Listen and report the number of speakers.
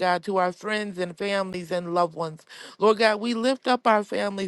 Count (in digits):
1